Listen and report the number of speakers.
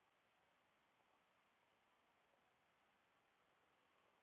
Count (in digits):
0